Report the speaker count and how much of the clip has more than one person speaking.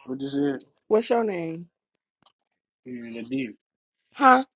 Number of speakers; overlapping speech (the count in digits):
2, no overlap